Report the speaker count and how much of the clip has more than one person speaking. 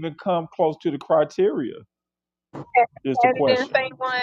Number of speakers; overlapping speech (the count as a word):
two, about 17%